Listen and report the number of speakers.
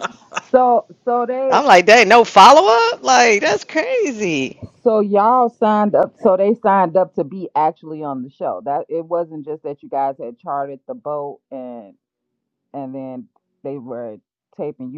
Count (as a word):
two